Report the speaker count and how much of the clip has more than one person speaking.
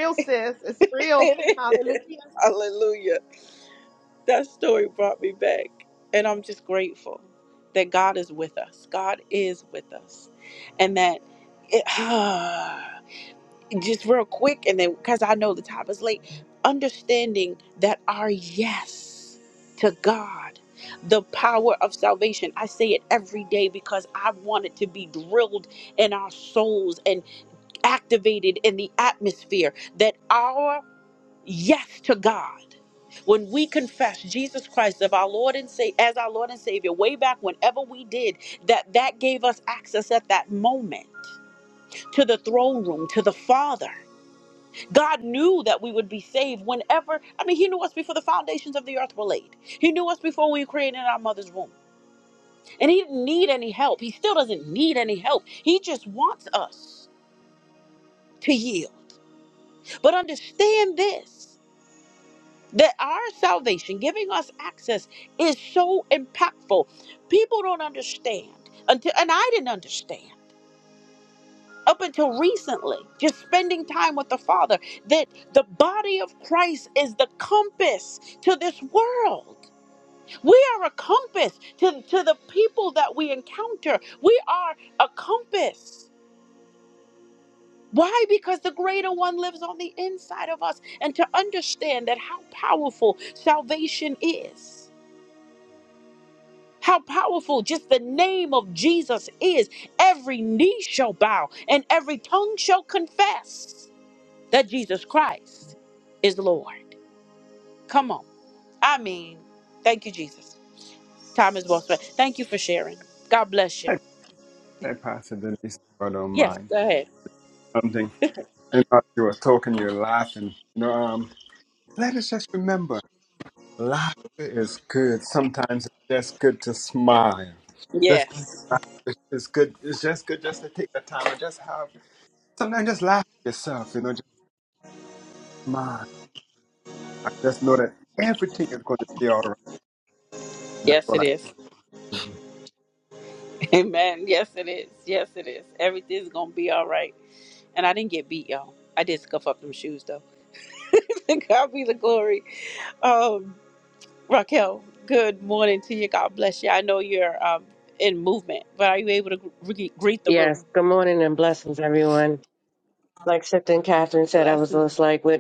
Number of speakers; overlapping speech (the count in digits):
4, about 1%